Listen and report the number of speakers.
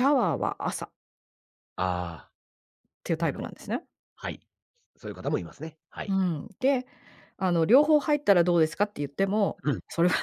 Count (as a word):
two